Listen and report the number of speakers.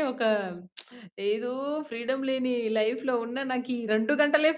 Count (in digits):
1